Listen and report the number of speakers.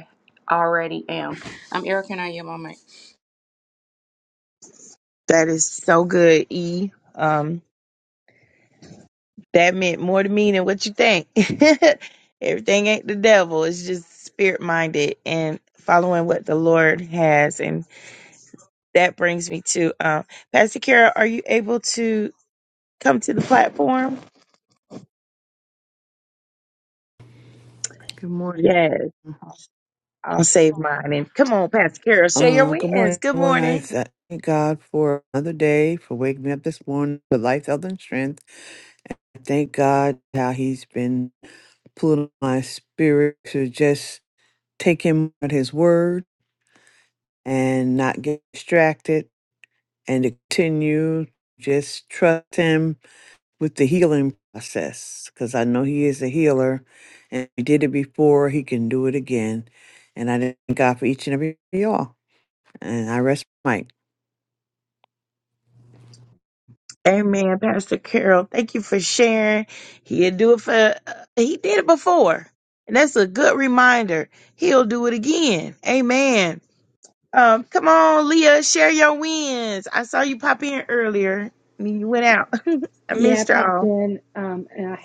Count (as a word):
four